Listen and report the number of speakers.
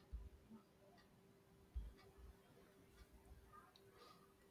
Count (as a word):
zero